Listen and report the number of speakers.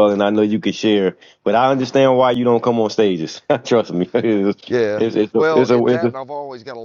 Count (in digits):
2